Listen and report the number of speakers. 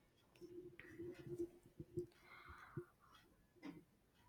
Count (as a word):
zero